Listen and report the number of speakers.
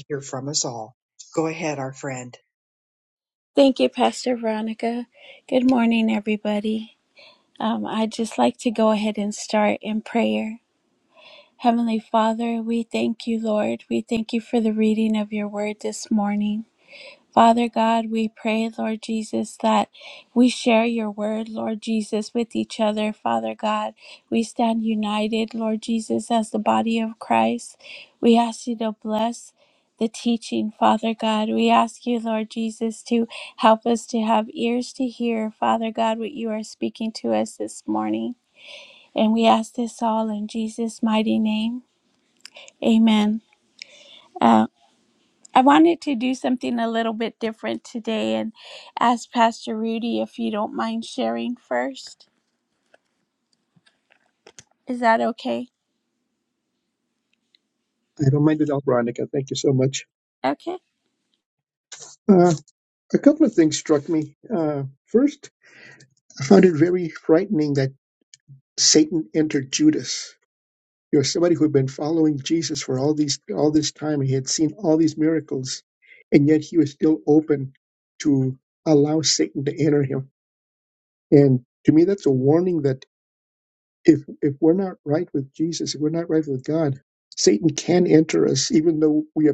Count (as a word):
three